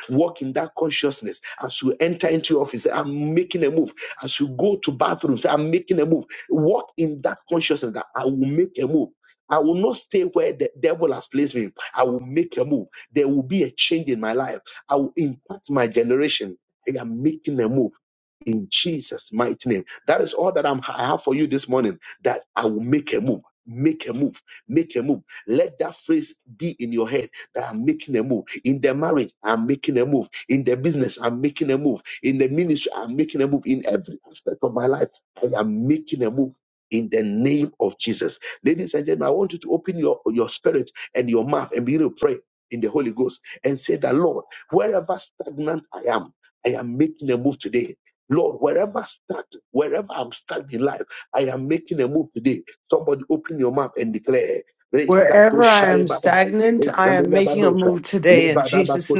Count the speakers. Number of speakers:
2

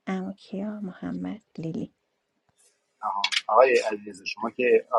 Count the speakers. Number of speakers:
2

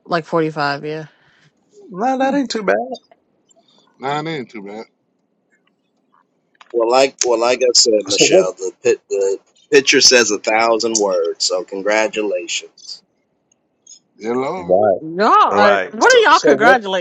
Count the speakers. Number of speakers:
4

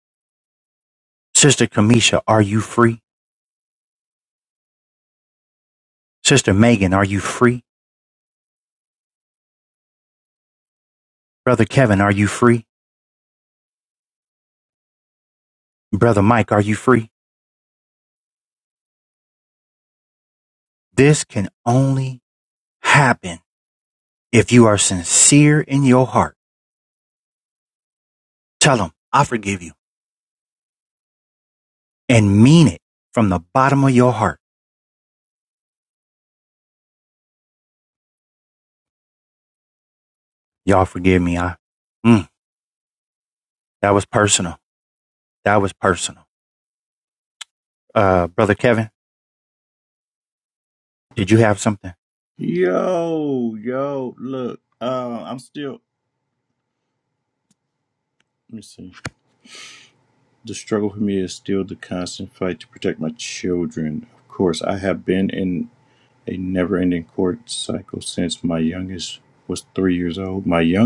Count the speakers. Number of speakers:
2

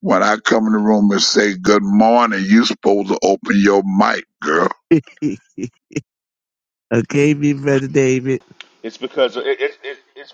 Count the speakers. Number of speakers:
3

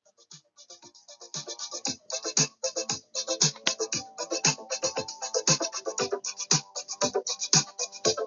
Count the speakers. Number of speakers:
0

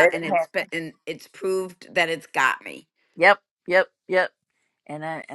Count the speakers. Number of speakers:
2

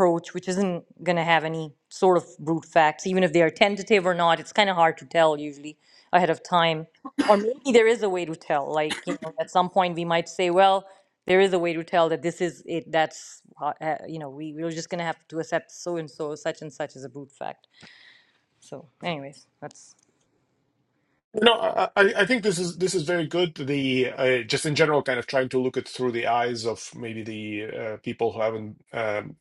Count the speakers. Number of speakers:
2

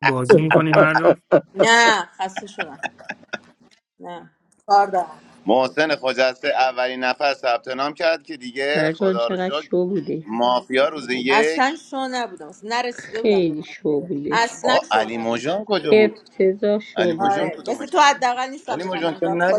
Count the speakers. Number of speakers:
4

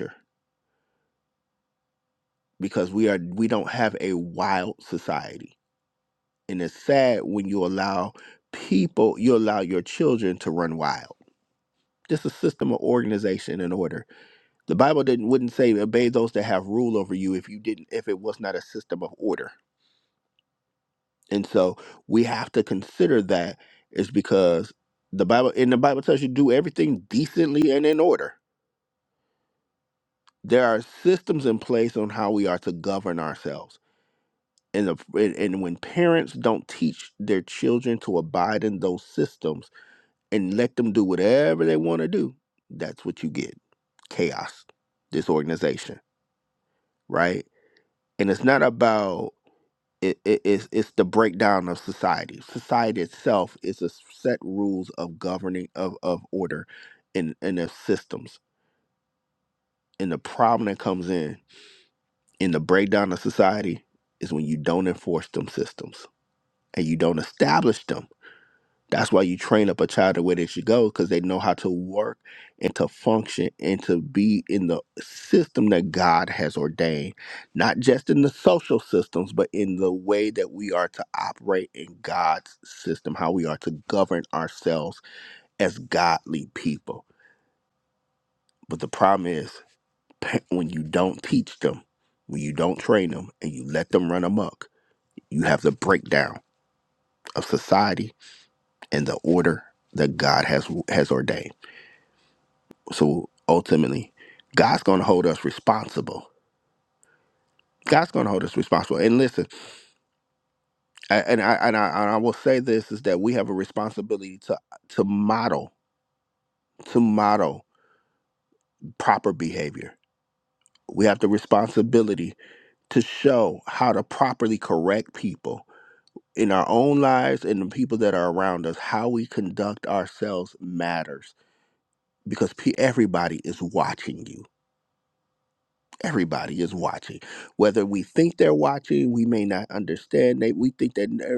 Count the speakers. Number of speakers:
1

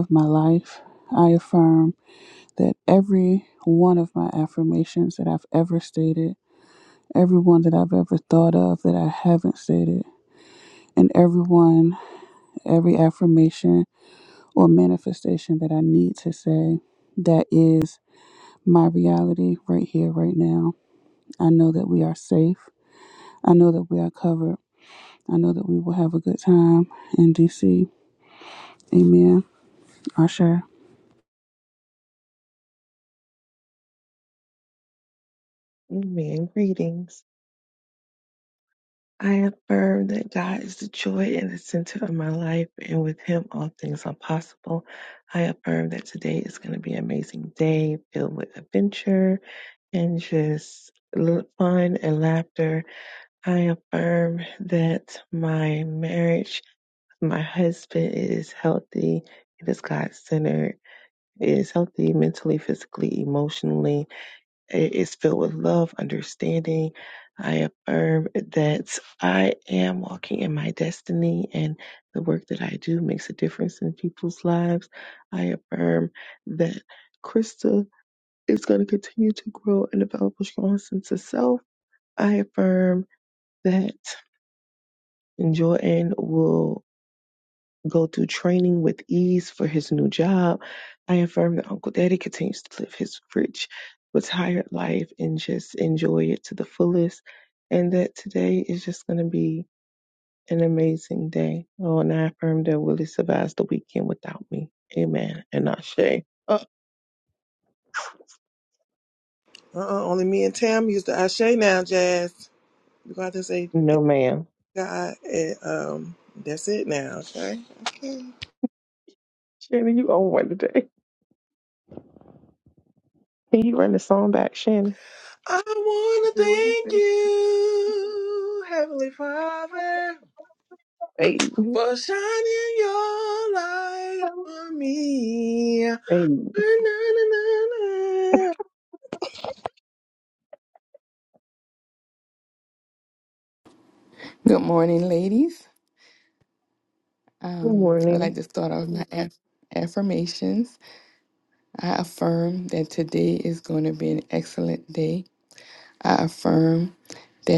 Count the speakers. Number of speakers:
4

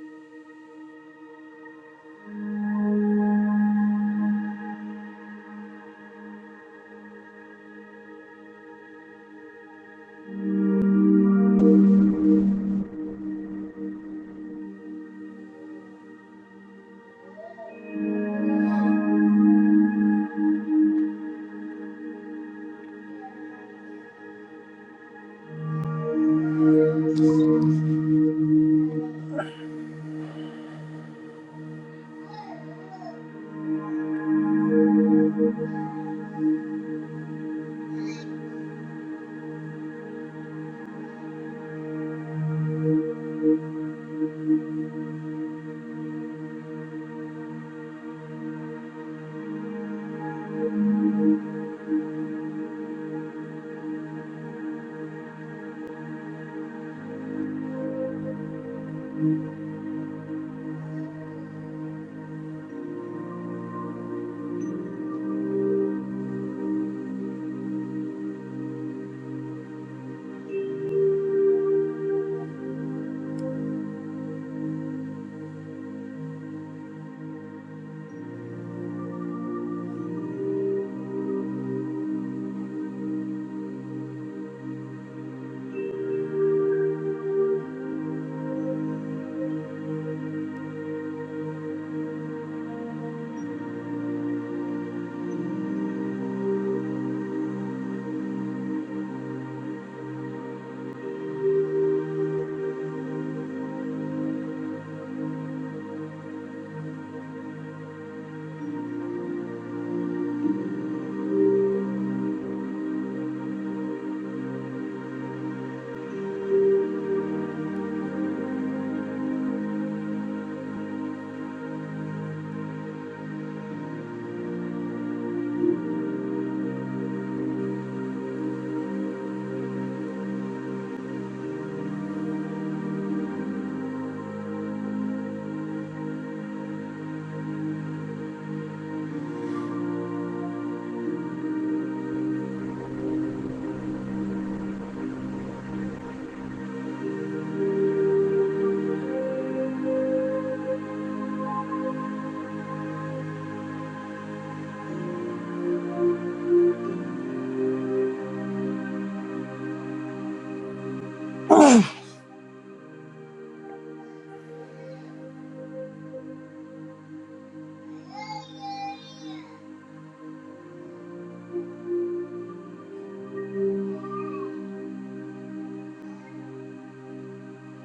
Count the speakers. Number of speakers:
0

